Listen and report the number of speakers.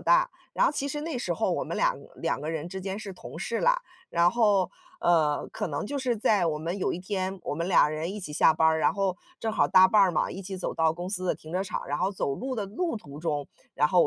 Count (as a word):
one